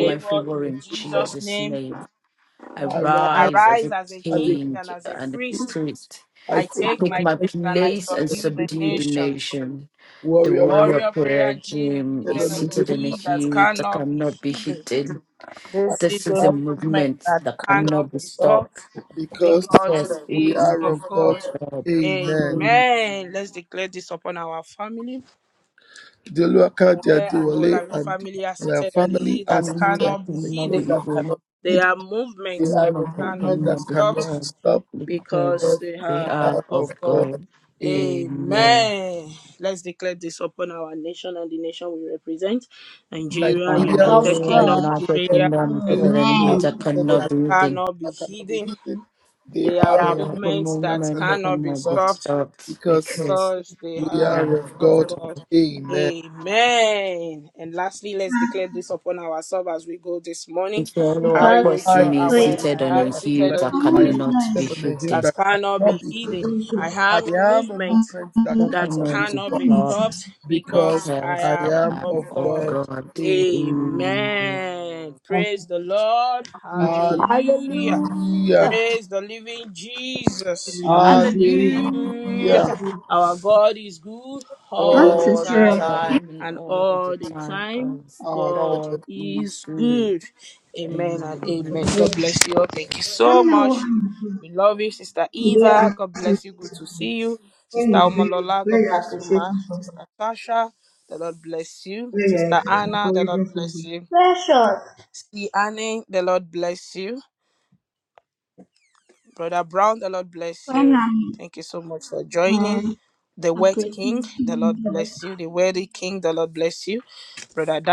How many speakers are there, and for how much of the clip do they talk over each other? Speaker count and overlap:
4, about 53%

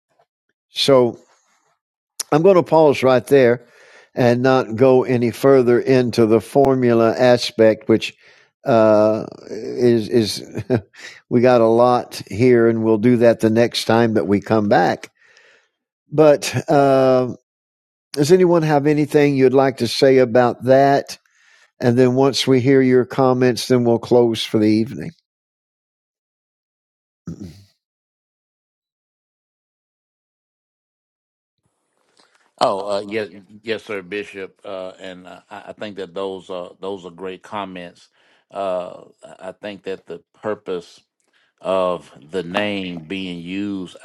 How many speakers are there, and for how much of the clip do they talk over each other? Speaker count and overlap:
2, no overlap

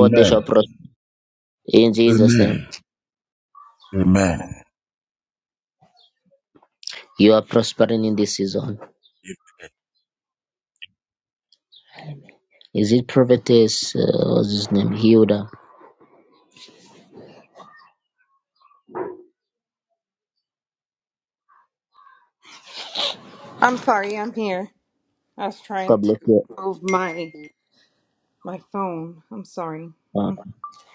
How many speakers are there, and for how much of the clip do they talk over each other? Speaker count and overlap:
3, about 6%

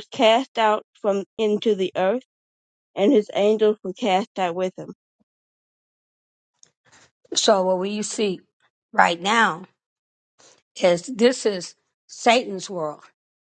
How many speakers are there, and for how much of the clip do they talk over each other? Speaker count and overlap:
2, no overlap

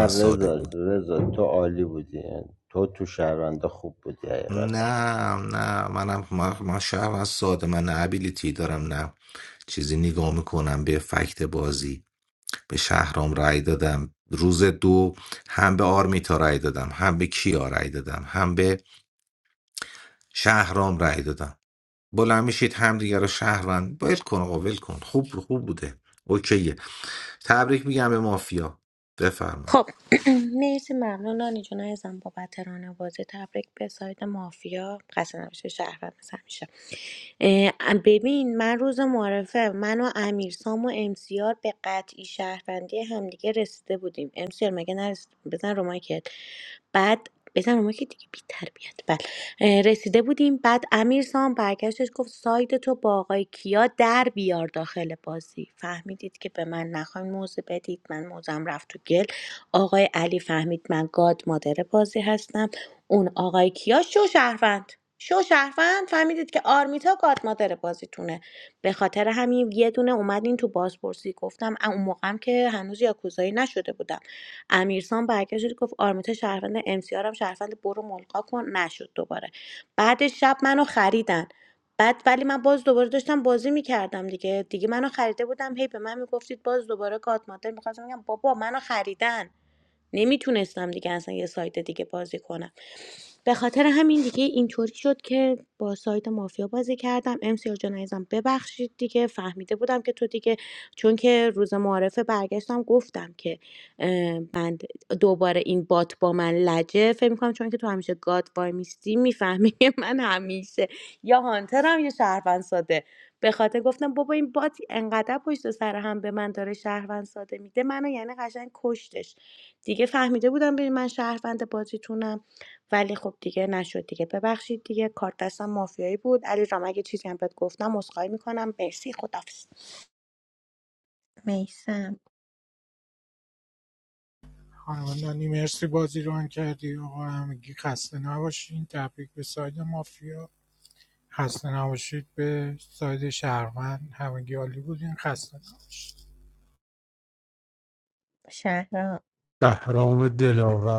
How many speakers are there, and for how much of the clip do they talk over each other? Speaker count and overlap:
6, about 1%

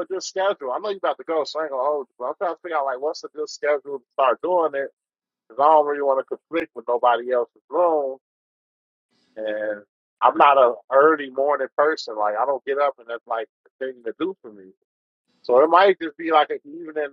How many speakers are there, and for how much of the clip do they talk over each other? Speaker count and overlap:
1, no overlap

